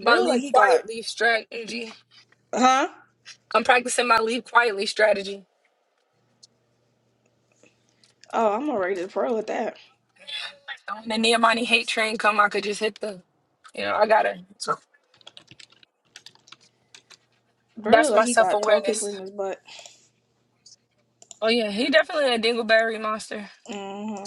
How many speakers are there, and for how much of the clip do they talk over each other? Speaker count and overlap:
two, about 9%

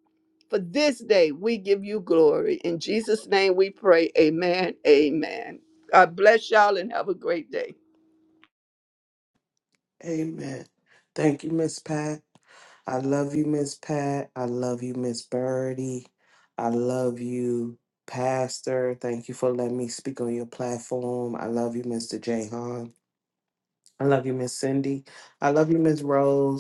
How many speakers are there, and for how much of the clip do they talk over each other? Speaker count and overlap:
two, no overlap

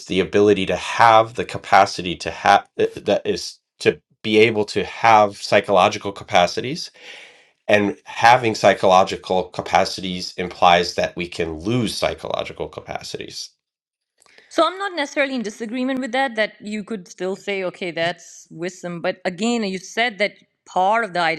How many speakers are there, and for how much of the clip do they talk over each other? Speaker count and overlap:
two, no overlap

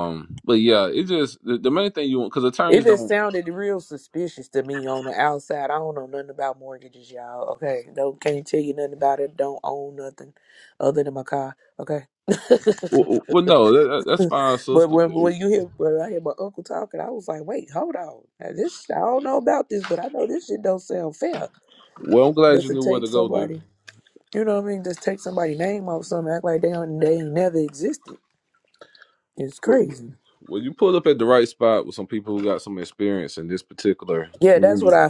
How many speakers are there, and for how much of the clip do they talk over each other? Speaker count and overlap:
two, about 5%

